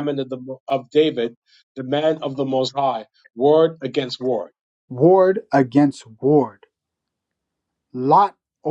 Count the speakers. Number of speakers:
2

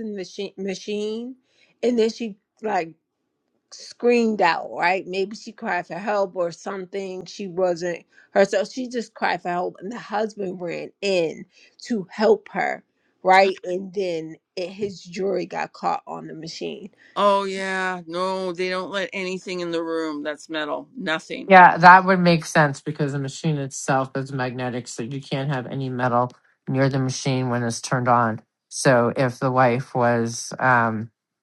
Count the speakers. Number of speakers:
3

